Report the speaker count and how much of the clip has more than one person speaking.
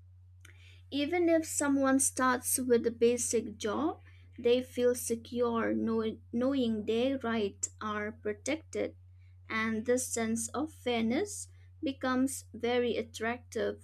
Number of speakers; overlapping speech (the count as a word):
one, no overlap